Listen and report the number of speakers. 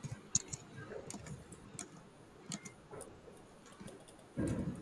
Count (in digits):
0